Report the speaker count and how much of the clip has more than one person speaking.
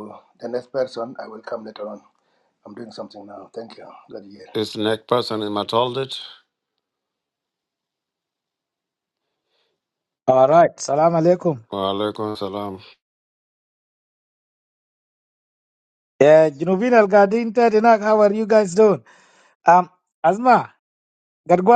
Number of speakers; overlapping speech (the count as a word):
three, no overlap